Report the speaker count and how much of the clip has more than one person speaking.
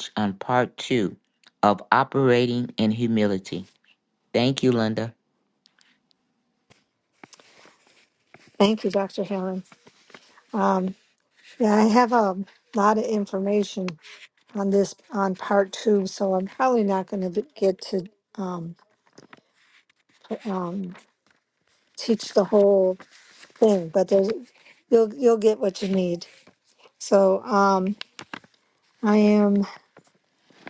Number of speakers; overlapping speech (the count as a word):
two, no overlap